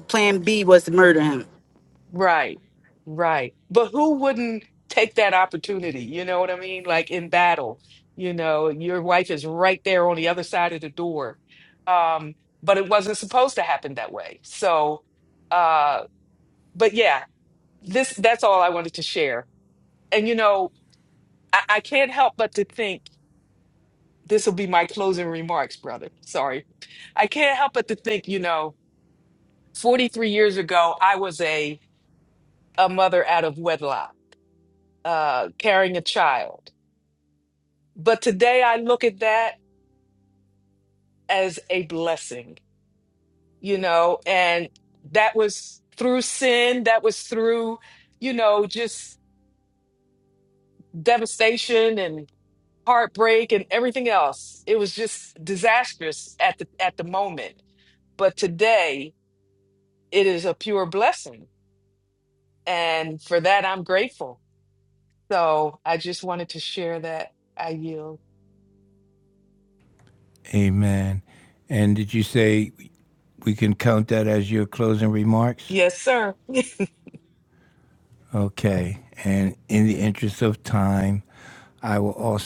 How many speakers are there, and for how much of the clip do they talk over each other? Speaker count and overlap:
3, under 1%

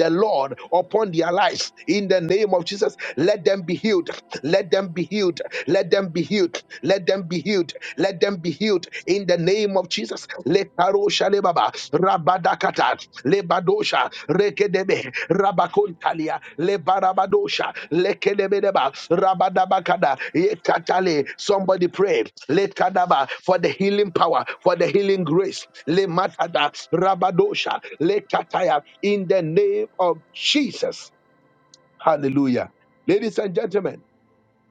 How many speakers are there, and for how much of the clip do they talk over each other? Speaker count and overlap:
1, no overlap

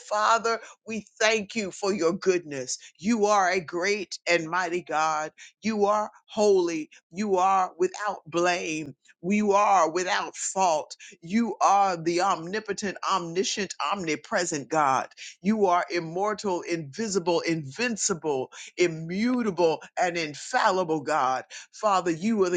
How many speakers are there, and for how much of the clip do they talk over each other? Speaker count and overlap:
1, no overlap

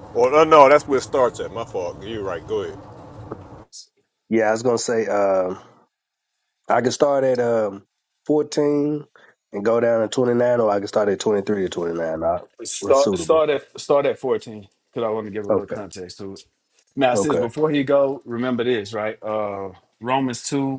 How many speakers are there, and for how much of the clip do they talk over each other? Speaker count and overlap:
3, about 6%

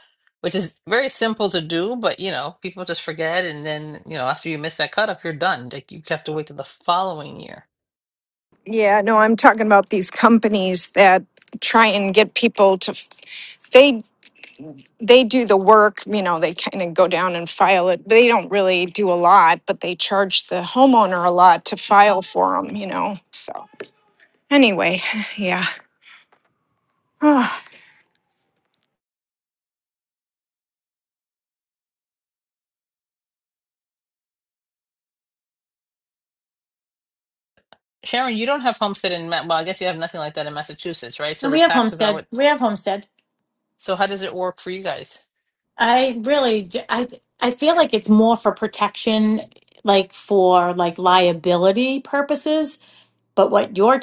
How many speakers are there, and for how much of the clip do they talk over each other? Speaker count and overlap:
3, about 1%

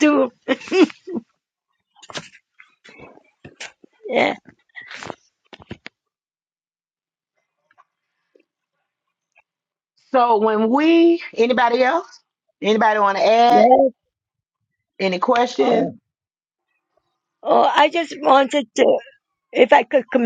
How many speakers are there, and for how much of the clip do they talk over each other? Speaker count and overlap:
2, about 2%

